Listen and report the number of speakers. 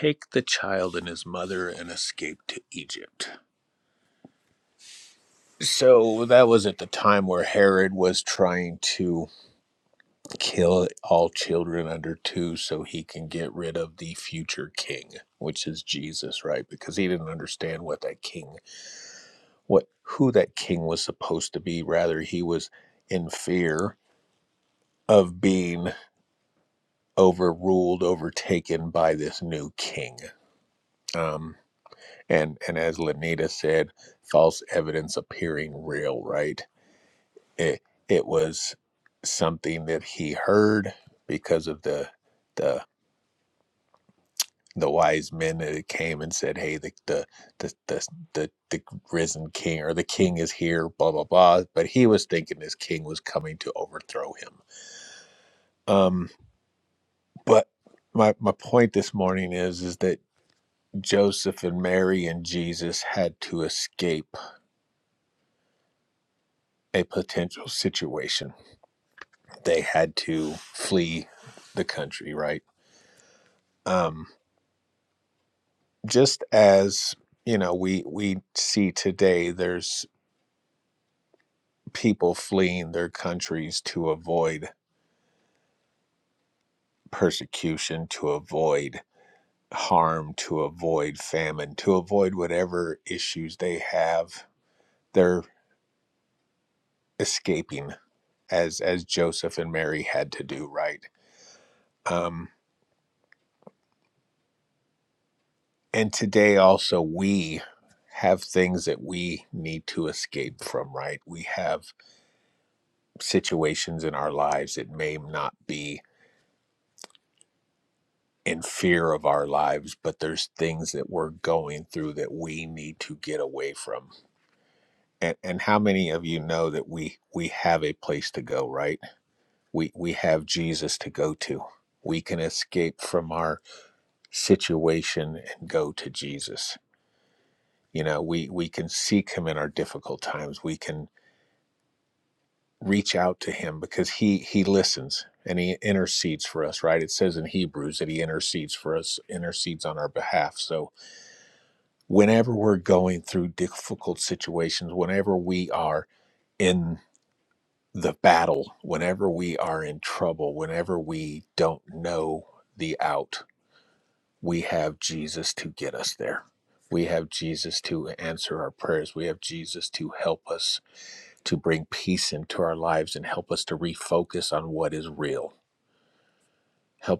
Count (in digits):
1